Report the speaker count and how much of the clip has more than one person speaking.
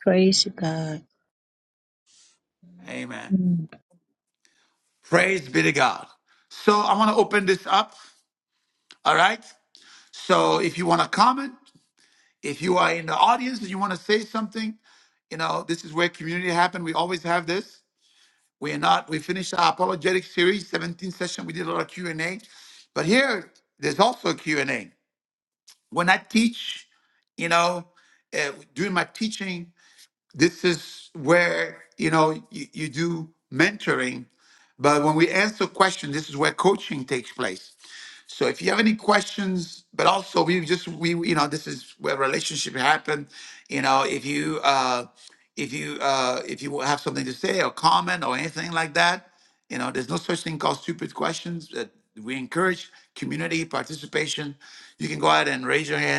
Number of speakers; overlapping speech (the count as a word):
two, no overlap